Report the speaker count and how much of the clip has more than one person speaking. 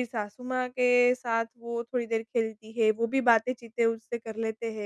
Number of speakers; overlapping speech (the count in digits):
1, no overlap